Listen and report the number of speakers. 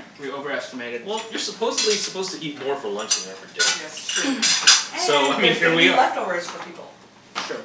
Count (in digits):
3